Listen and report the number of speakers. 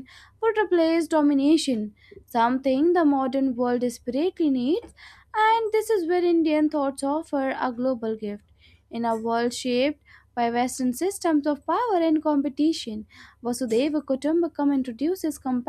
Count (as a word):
one